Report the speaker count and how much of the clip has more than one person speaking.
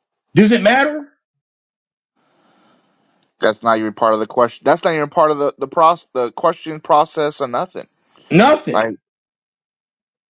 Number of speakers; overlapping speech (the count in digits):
2, about 2%